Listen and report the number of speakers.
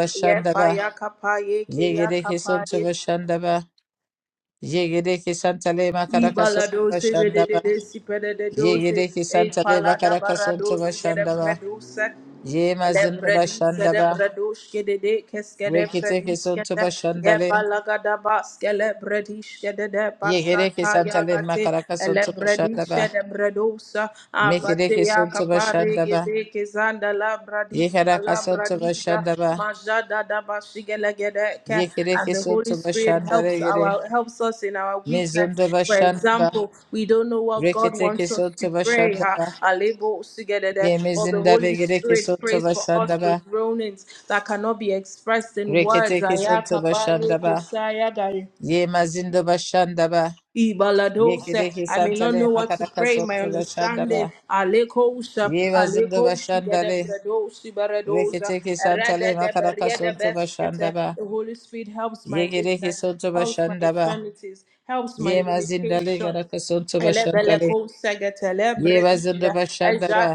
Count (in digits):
2